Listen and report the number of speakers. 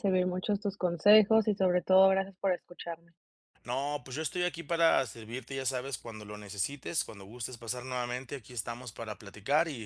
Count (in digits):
2